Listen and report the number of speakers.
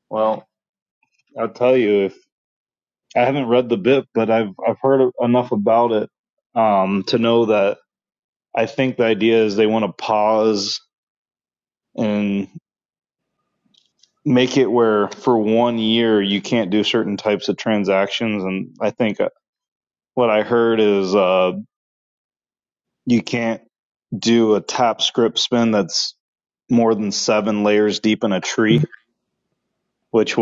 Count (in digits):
1